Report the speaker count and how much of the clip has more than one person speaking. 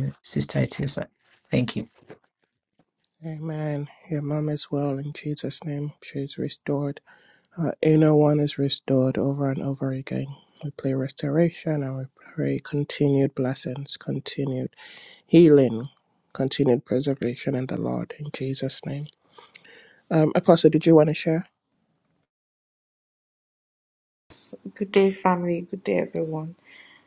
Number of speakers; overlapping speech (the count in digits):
3, no overlap